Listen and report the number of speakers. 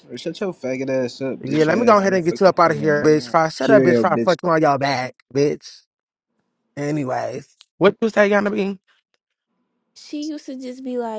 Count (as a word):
three